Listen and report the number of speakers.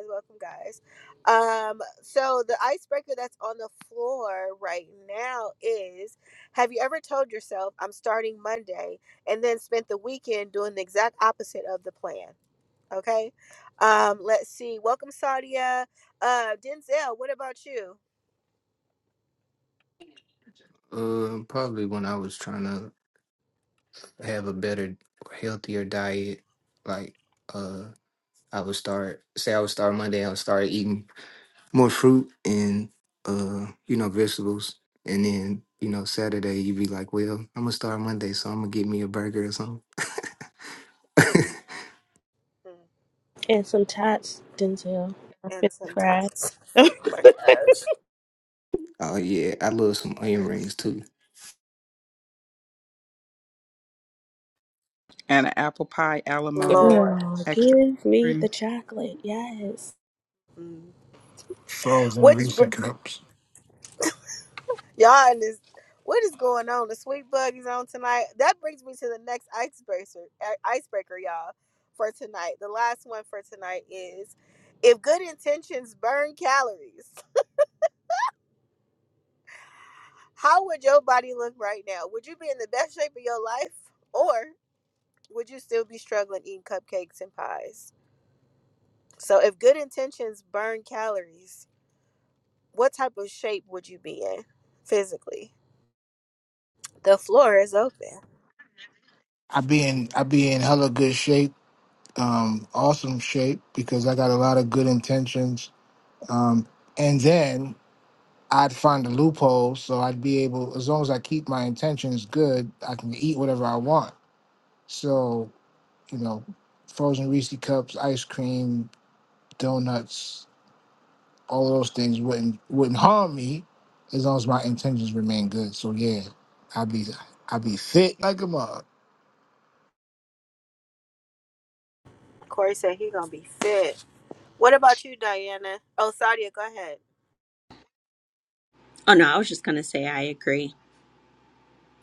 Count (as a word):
six